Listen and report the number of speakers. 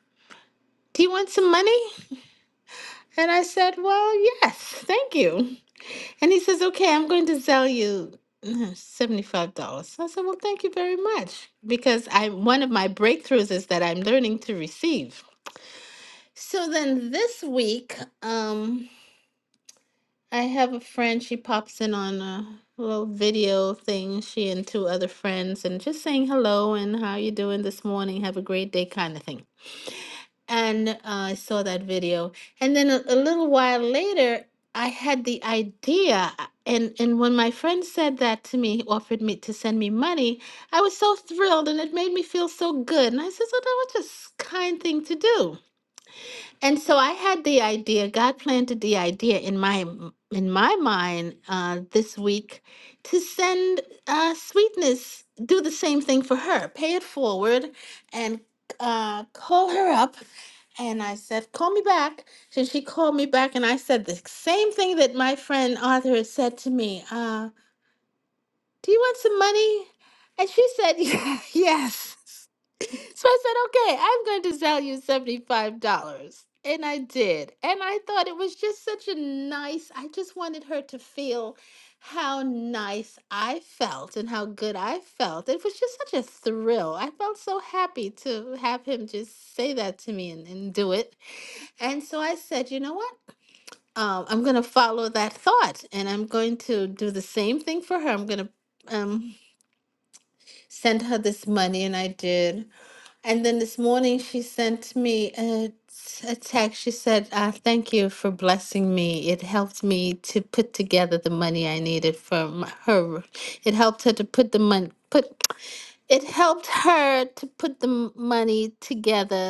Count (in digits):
1